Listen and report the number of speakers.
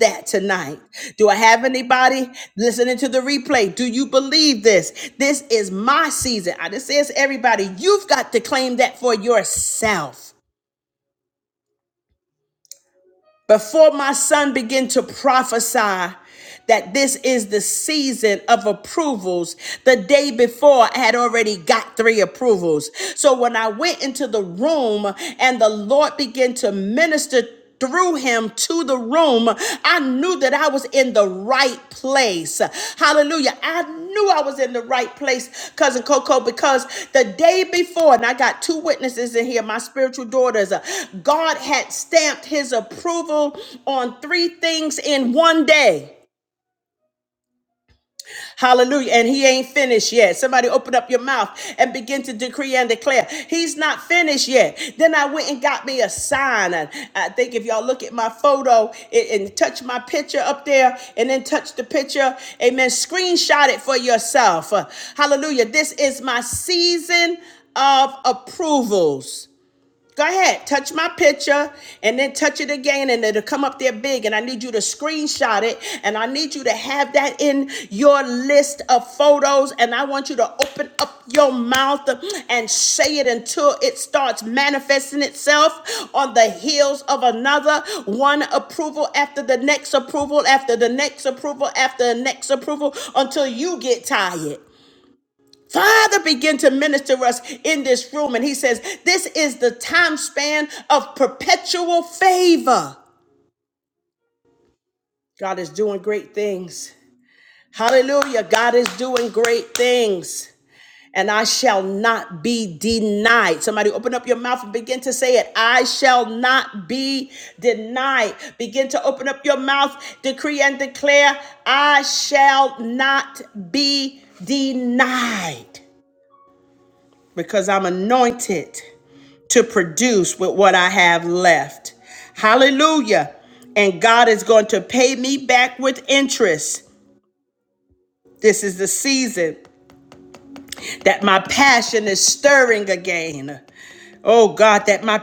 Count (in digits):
1